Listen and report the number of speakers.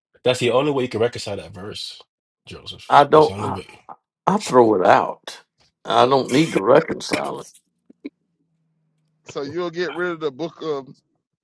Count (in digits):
3